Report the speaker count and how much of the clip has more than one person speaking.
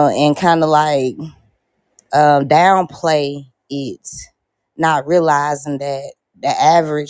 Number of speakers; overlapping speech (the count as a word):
one, no overlap